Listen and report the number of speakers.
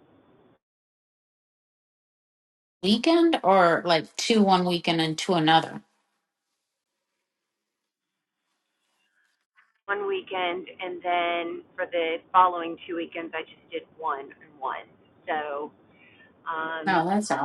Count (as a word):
two